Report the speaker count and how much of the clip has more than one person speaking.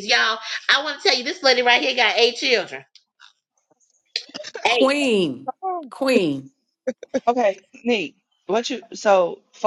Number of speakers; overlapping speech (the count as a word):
three, about 1%